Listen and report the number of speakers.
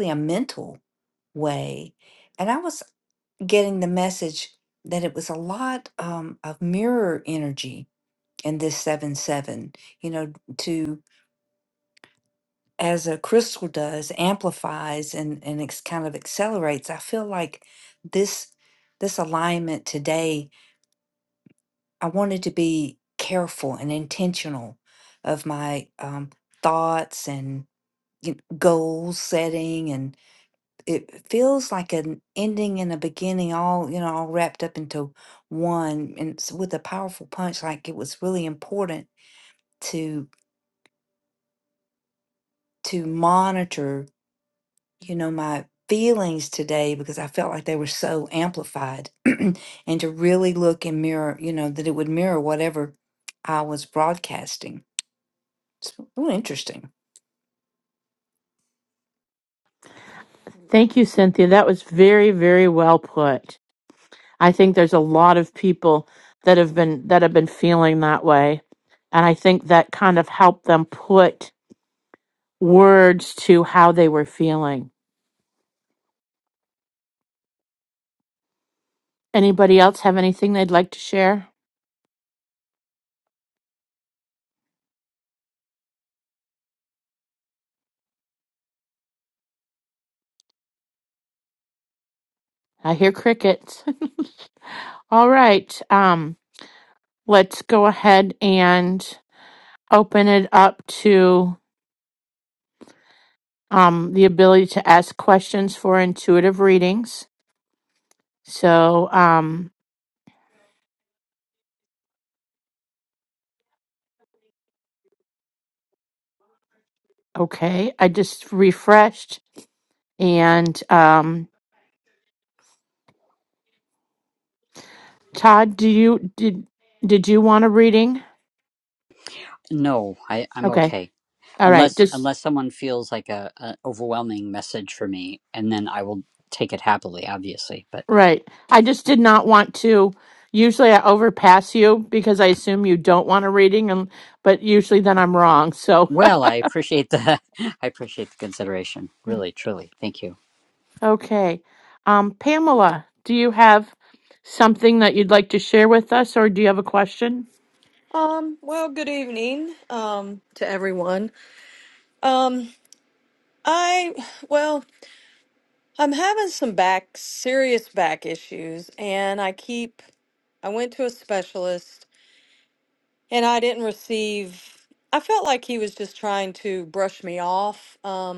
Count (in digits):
4